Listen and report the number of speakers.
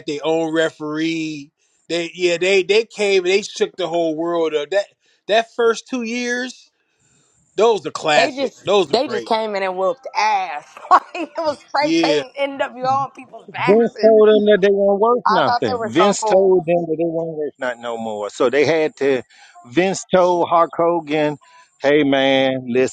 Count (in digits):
3